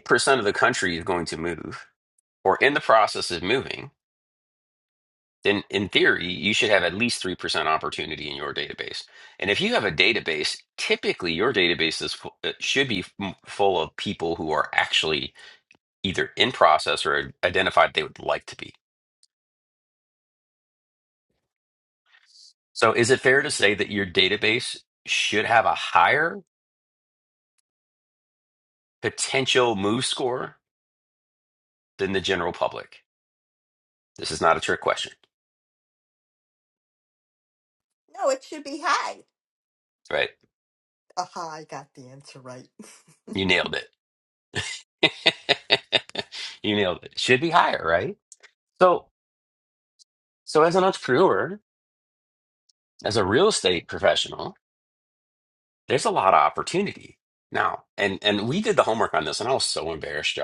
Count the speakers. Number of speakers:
two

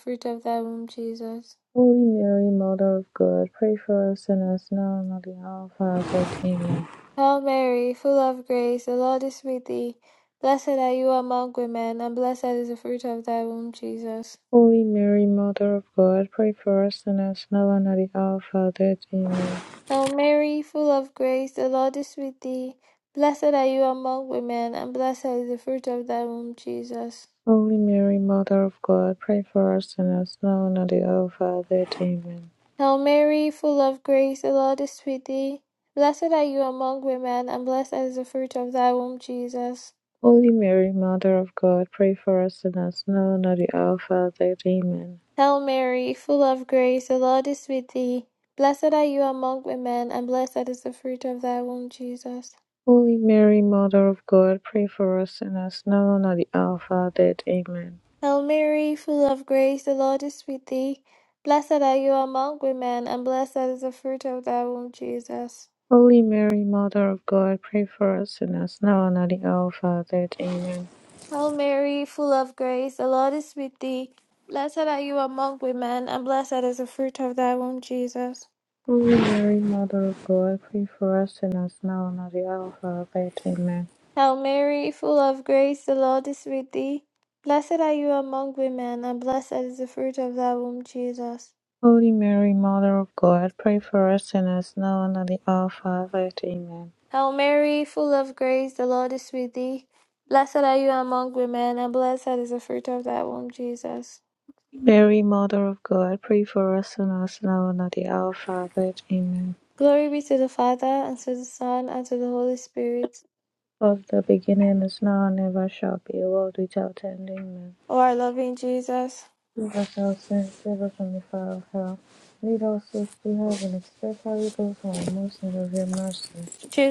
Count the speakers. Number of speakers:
two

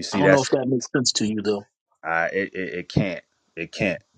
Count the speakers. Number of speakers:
two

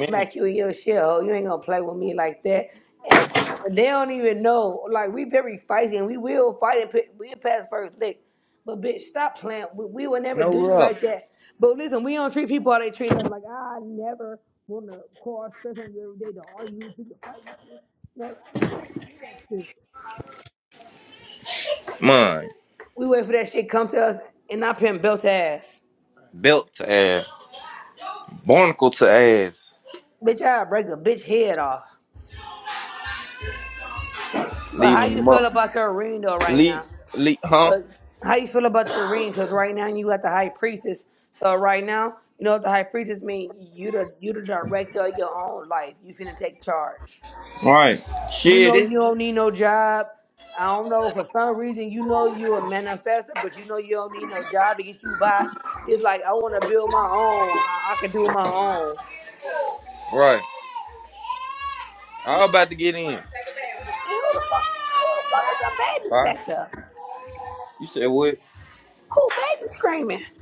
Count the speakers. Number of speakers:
two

